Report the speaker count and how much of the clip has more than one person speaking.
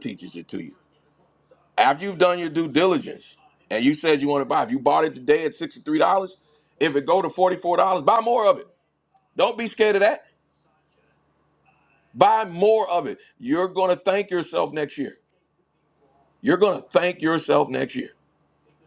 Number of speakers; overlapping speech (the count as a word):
one, no overlap